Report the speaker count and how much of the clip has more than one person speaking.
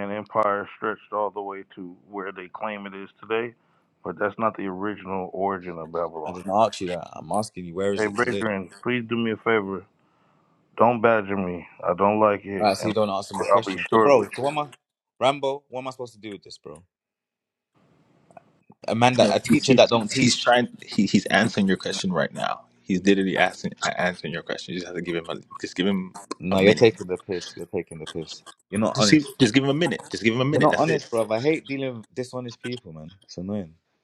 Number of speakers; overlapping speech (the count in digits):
3, about 12%